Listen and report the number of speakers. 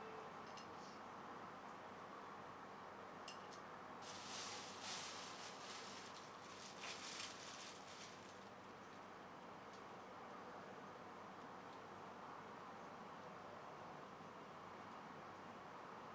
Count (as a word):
zero